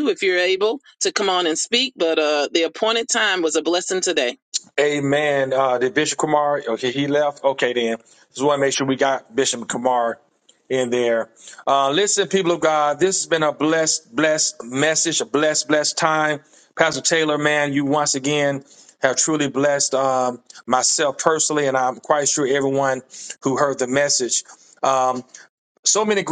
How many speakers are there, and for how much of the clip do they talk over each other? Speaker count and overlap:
2, no overlap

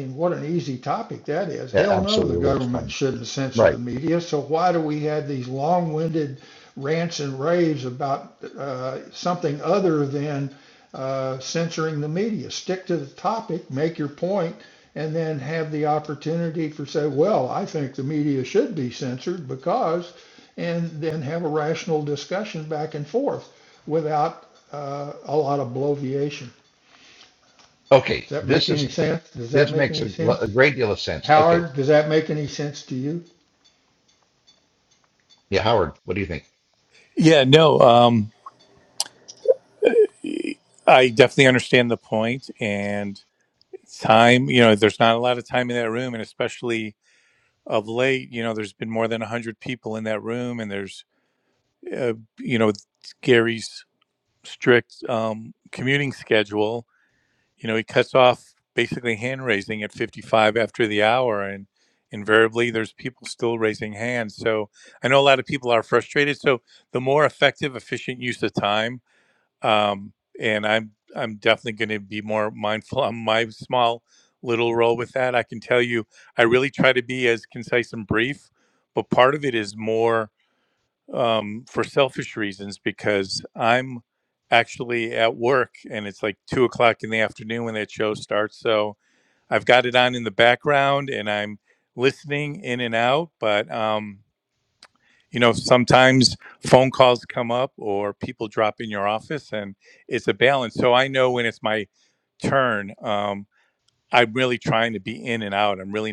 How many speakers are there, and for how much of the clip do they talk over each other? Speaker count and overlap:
3, about 3%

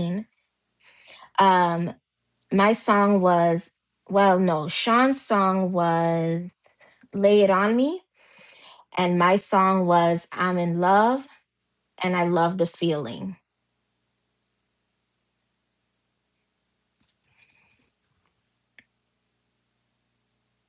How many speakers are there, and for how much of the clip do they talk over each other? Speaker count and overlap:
1, no overlap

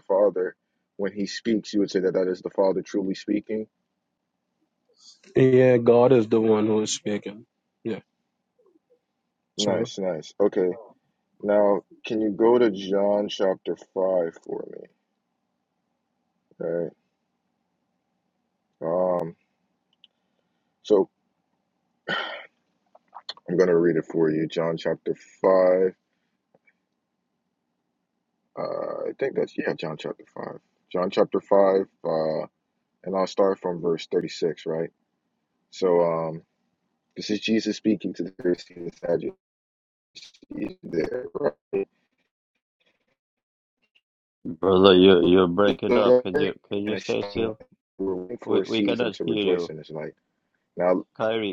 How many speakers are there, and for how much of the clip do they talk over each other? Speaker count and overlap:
3, about 4%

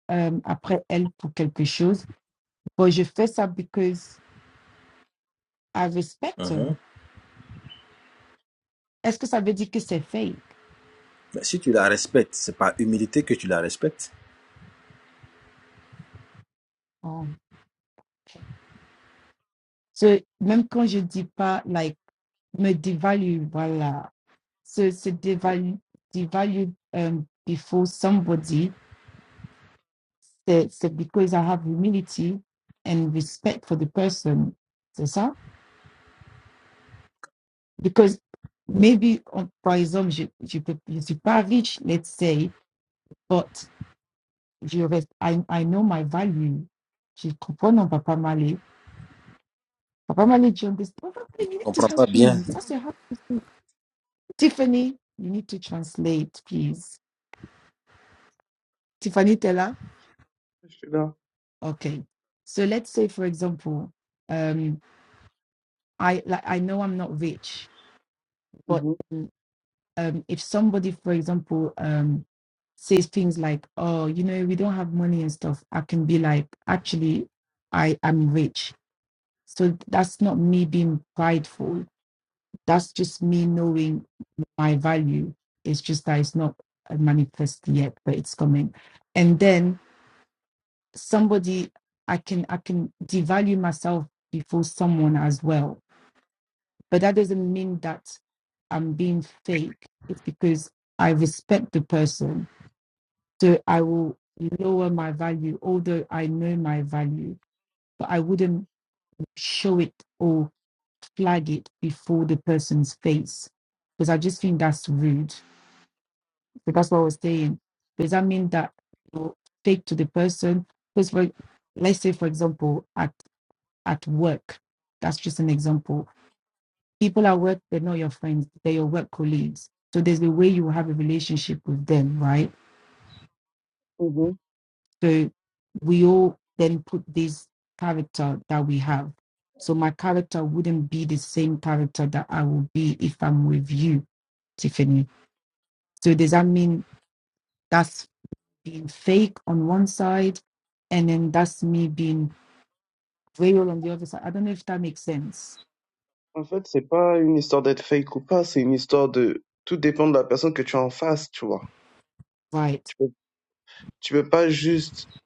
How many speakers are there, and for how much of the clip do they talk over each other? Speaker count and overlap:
3, about 1%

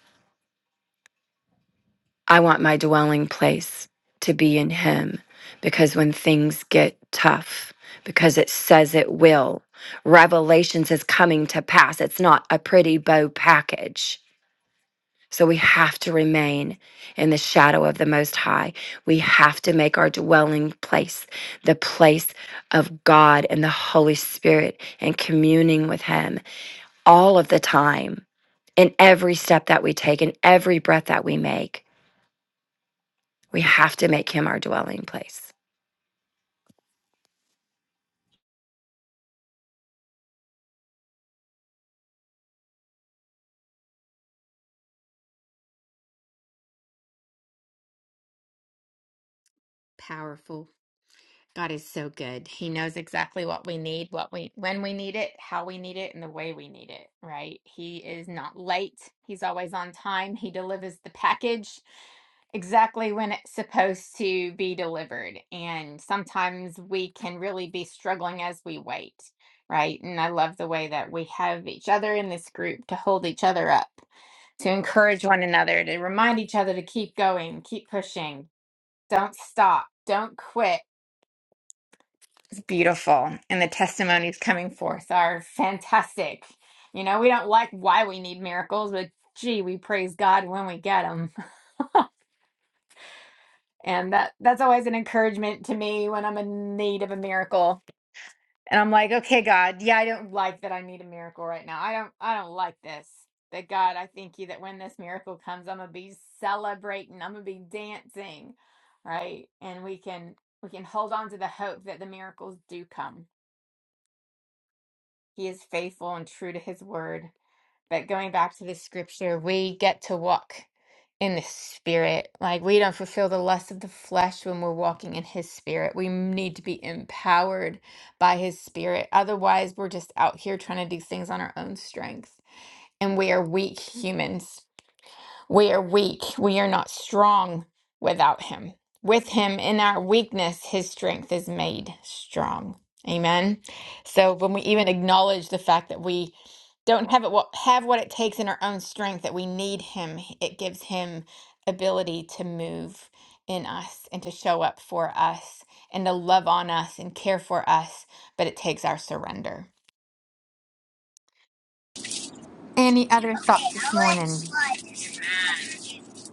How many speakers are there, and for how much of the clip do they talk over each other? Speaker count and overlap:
3, no overlap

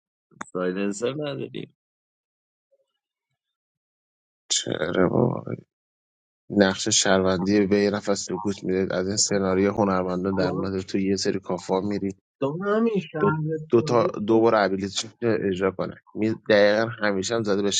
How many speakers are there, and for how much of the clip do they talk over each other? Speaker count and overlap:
3, about 4%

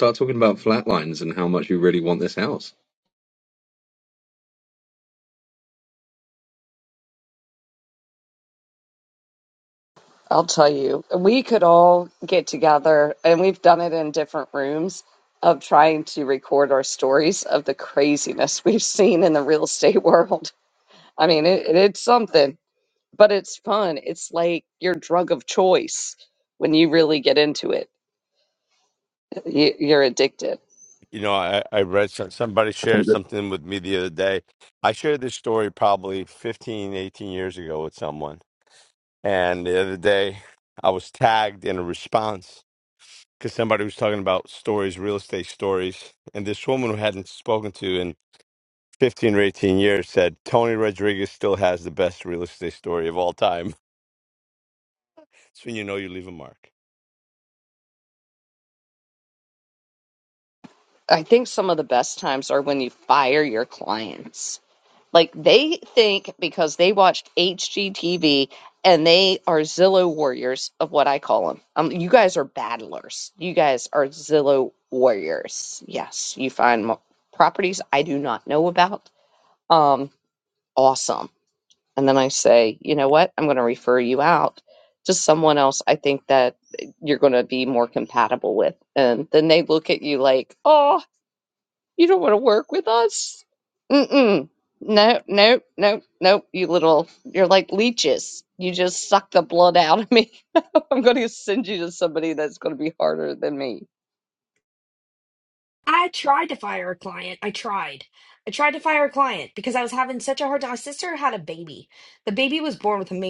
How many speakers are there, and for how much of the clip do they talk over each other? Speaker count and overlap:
4, under 1%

